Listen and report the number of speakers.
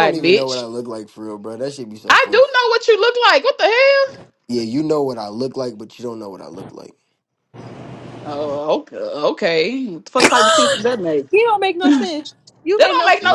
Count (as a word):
three